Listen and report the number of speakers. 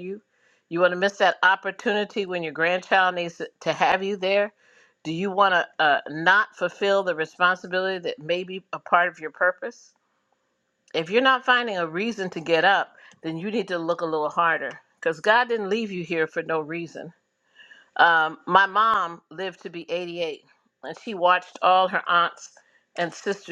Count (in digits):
1